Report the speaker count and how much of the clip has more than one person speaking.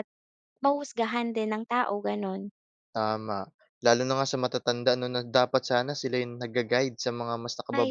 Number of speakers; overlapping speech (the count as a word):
two, about 3%